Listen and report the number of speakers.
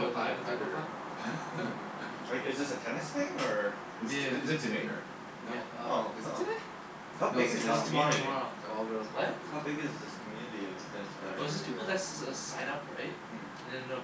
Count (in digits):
4